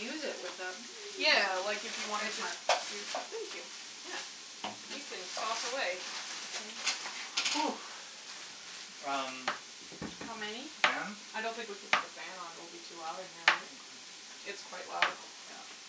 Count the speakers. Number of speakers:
three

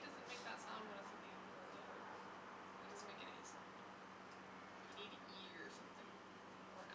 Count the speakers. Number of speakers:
one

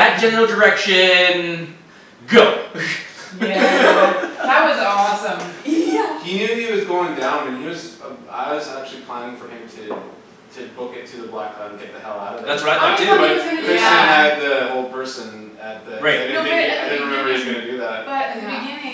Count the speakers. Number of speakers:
four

